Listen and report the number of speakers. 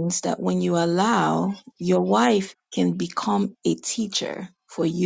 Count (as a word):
one